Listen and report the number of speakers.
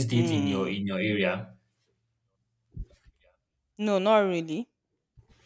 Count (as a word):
two